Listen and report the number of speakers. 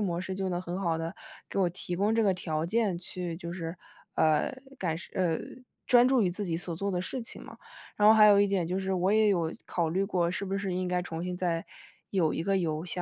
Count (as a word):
one